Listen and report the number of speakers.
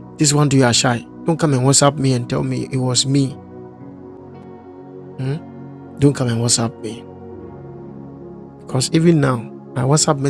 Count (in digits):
1